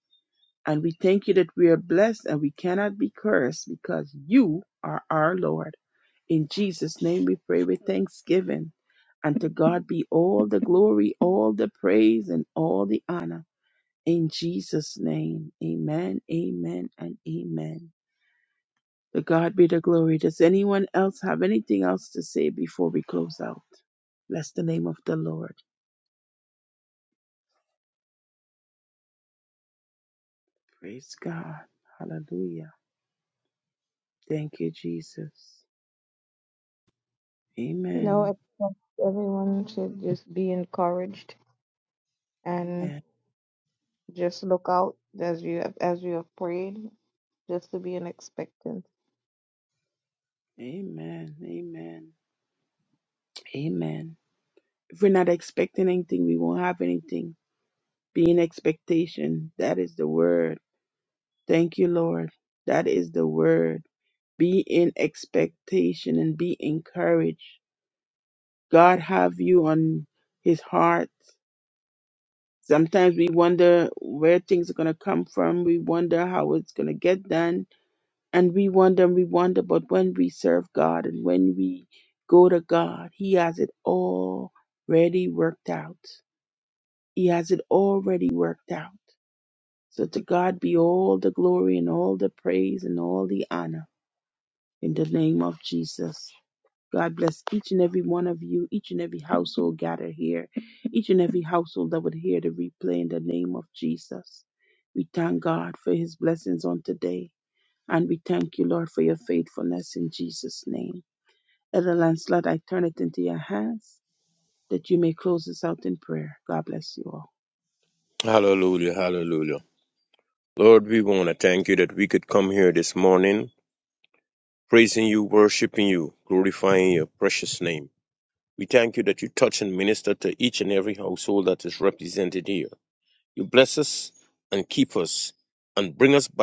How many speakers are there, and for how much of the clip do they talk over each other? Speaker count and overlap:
3, under 1%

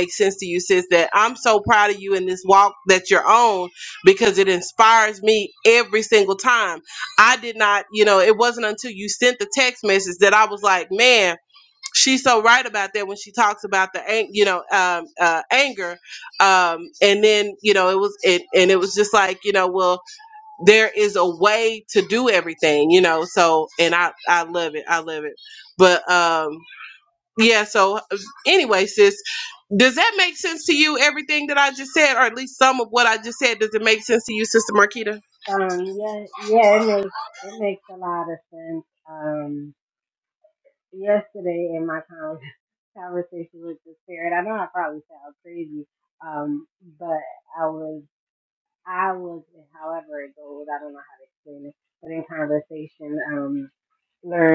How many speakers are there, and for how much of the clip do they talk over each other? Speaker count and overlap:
2, no overlap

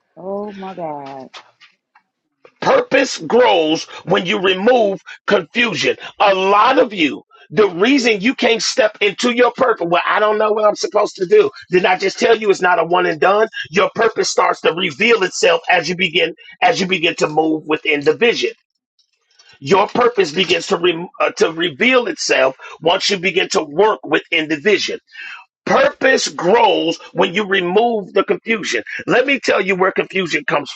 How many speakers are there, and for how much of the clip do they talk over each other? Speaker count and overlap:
2, no overlap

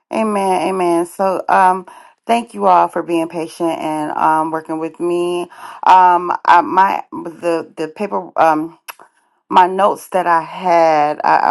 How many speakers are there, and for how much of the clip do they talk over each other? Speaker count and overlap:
1, no overlap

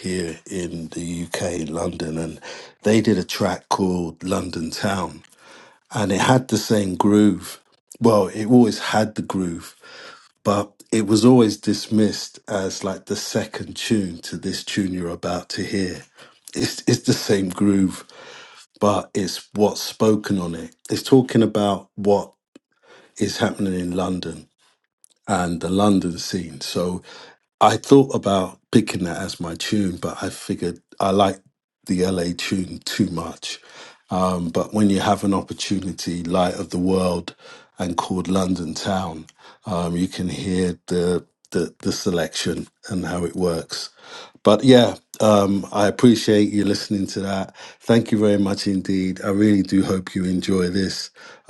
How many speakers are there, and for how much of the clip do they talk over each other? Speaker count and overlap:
1, no overlap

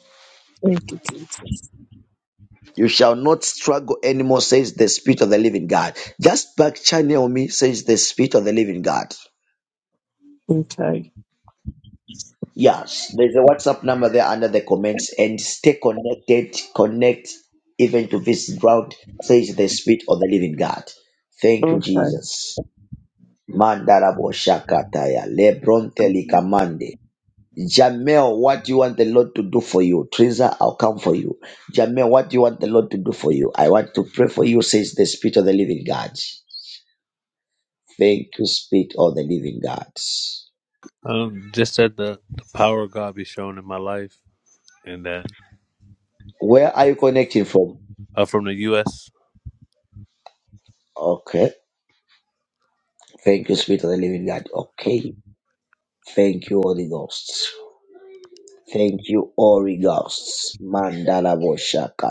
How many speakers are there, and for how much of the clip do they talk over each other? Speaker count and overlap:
3, about 1%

